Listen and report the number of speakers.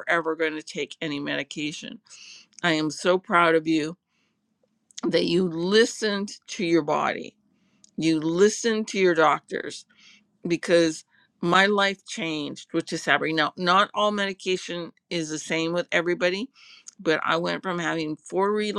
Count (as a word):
one